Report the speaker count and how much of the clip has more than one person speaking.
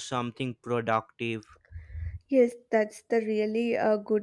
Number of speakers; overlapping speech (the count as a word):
two, no overlap